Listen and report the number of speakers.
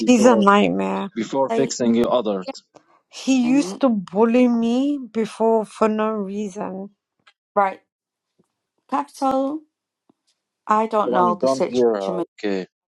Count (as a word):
three